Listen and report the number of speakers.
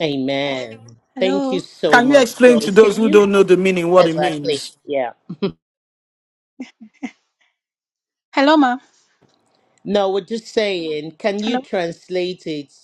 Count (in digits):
3